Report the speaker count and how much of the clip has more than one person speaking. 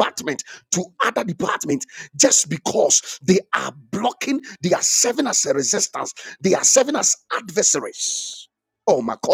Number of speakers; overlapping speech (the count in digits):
1, no overlap